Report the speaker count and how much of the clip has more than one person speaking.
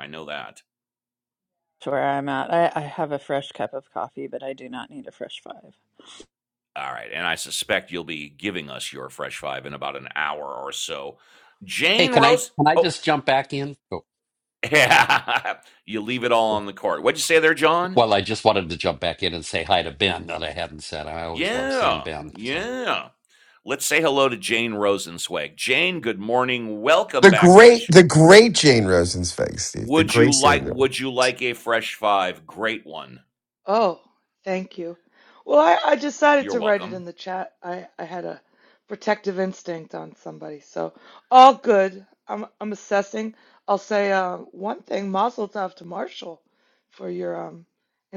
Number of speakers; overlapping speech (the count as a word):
five, about 10%